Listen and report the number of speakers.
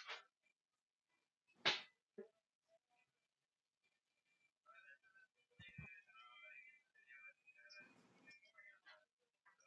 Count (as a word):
zero